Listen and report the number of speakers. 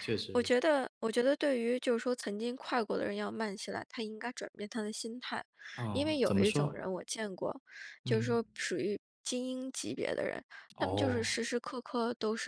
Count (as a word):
two